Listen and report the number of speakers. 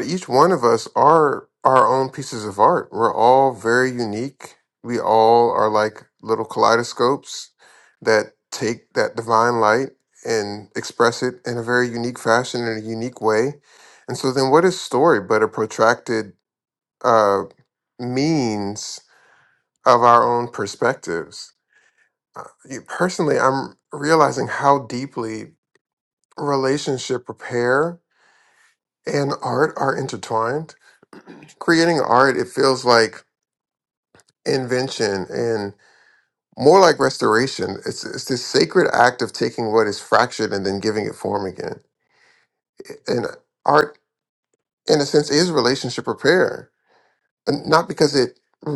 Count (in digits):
1